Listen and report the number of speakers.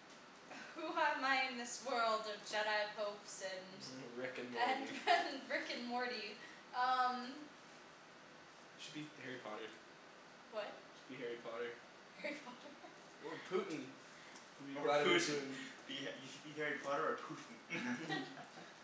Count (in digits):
3